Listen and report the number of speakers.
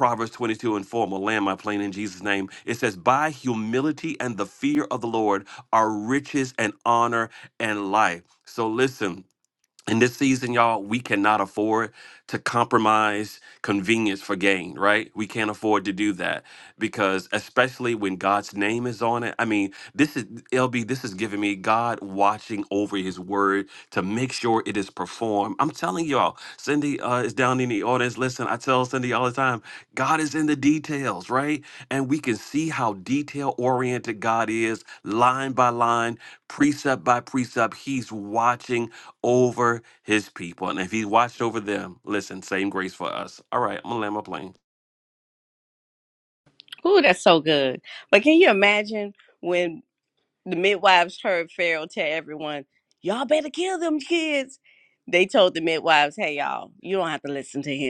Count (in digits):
2